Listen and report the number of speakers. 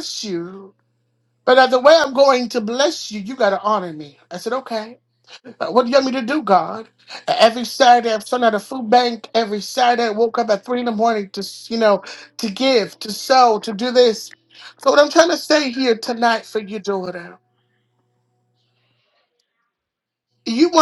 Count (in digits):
1